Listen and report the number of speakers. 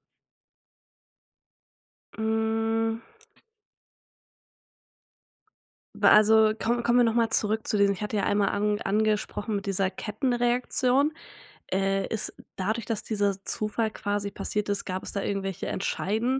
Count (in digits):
1